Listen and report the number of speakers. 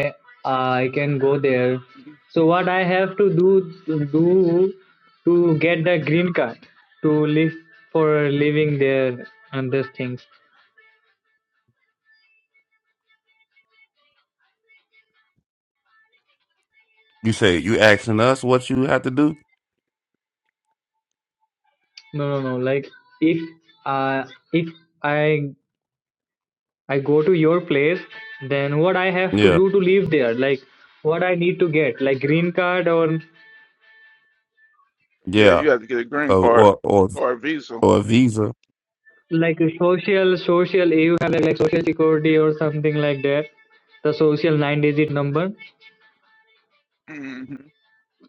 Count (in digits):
3